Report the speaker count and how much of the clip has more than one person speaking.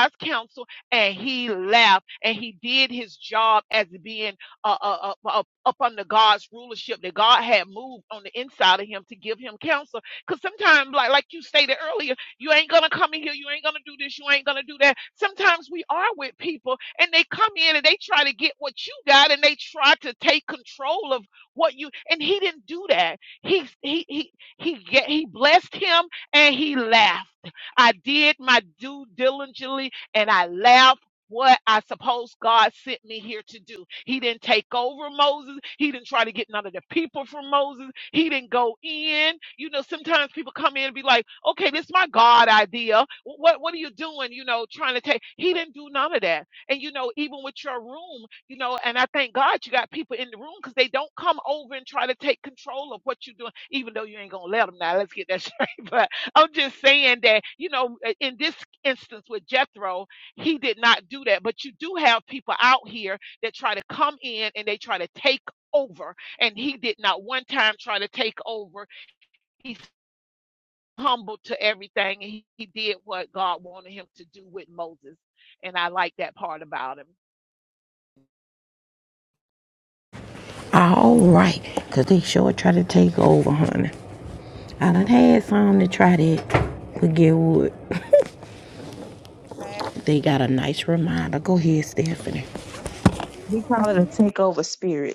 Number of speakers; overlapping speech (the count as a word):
three, no overlap